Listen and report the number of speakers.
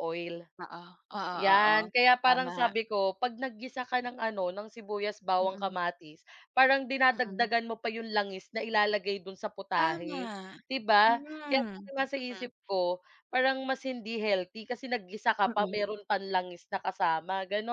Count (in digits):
2